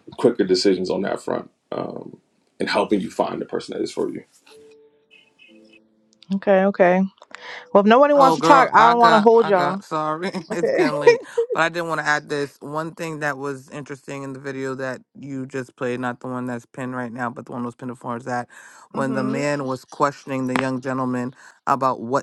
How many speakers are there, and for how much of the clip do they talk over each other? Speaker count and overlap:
3, about 11%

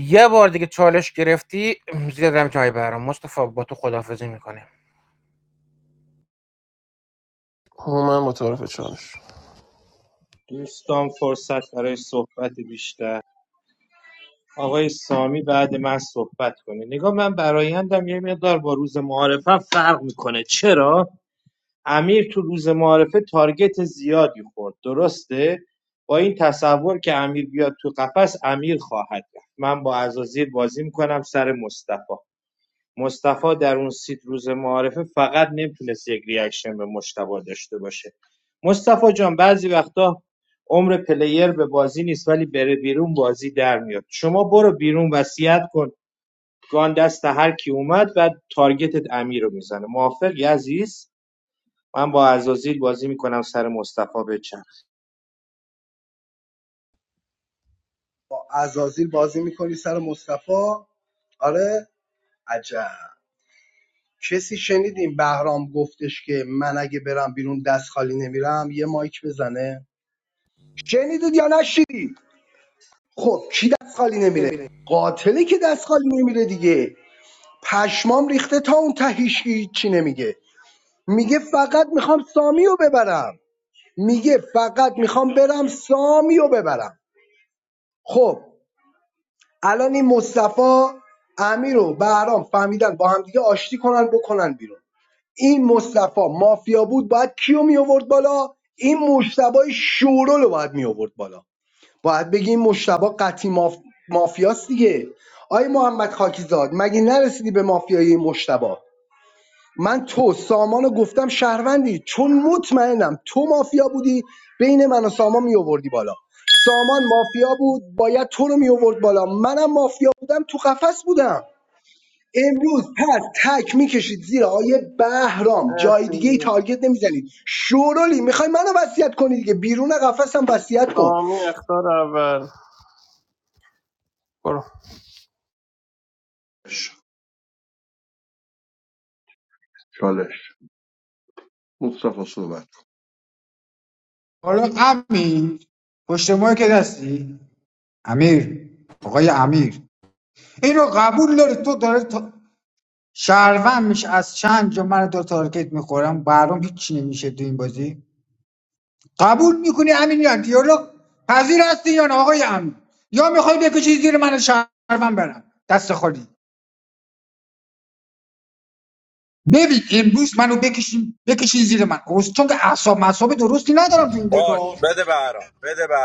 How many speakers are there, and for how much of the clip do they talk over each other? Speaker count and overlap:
7, about 1%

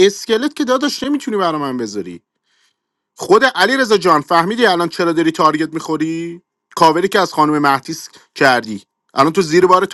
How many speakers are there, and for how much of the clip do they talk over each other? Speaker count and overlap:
1, no overlap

